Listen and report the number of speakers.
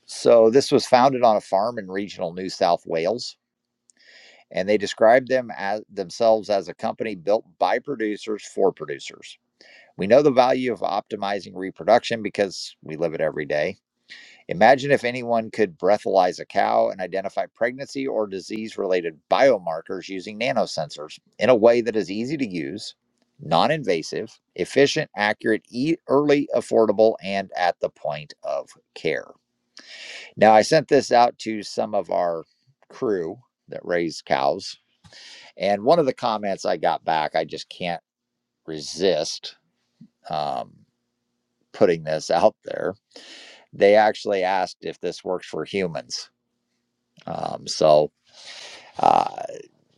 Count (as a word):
one